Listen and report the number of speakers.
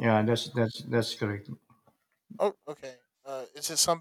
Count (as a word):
two